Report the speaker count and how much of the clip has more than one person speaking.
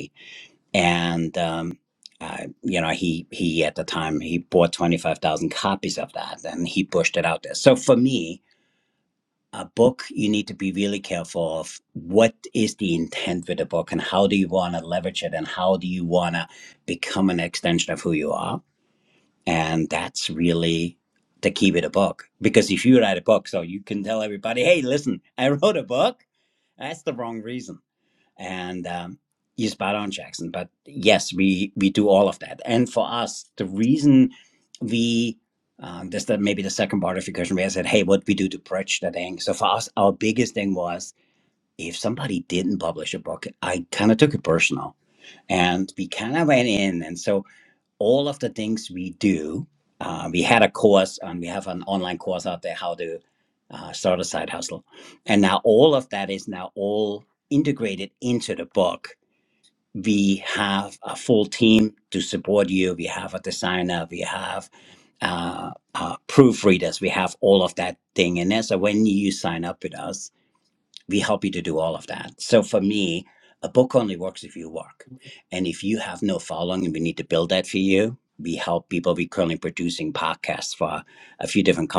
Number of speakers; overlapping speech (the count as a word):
one, no overlap